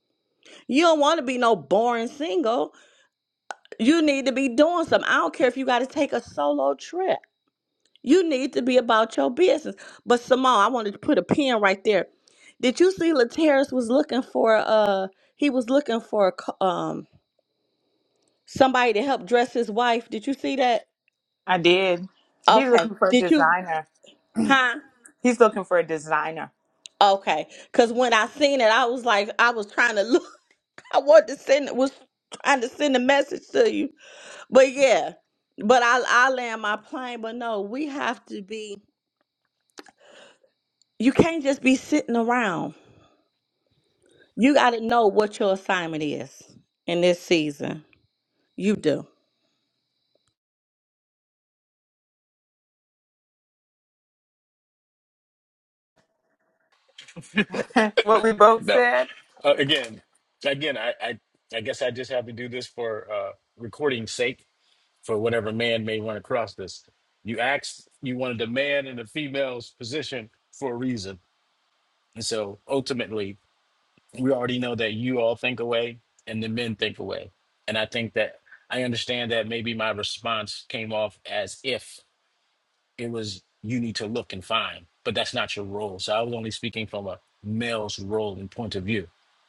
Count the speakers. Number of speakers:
three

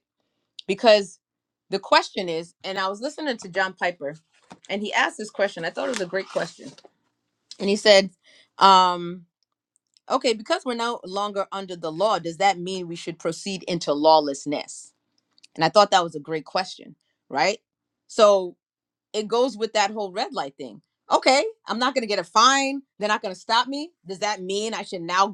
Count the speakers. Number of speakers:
one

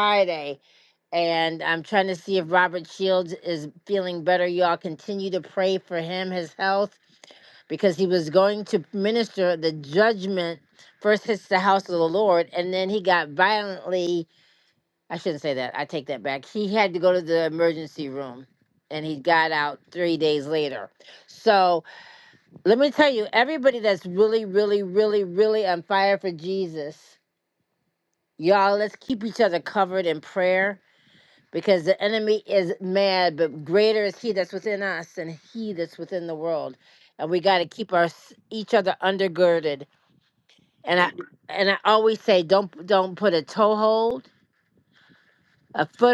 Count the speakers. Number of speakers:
one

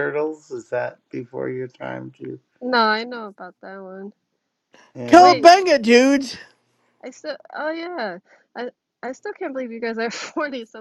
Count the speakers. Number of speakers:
three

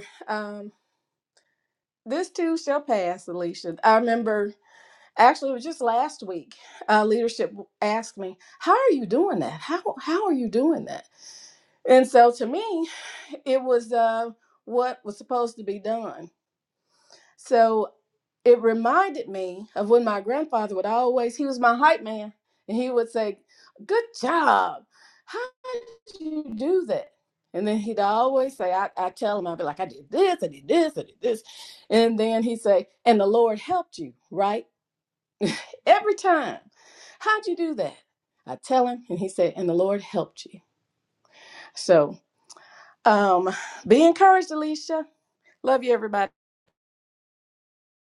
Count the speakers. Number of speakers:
one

